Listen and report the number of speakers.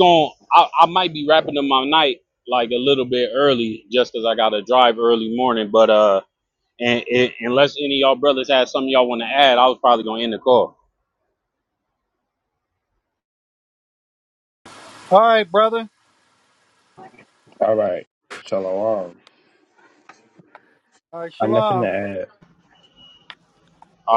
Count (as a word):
three